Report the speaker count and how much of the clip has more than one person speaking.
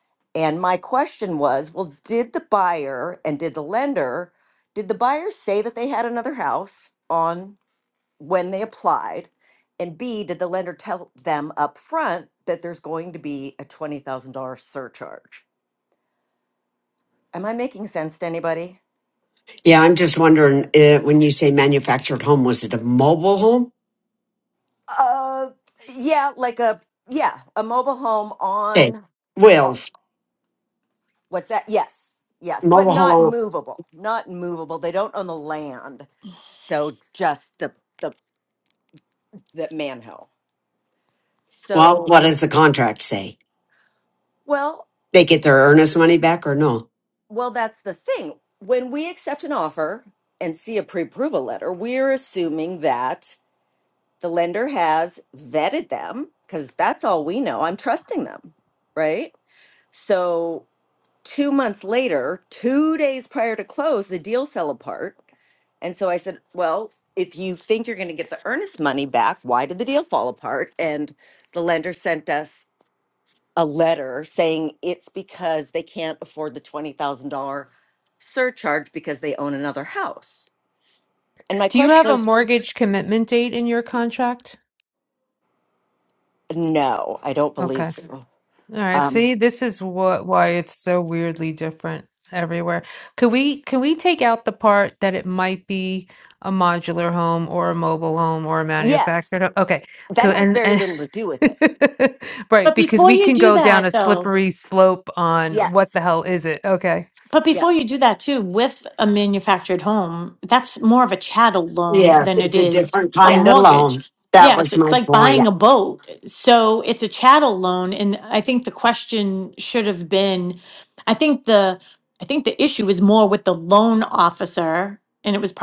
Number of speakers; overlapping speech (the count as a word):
four, about 7%